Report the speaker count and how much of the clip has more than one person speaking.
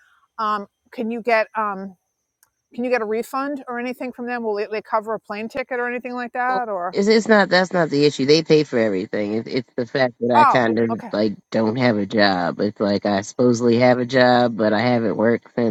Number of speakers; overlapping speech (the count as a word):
two, about 6%